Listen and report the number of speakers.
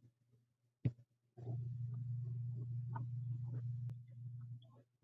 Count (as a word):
zero